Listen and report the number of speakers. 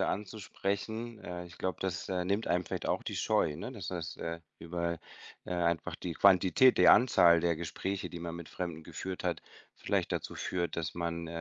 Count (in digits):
1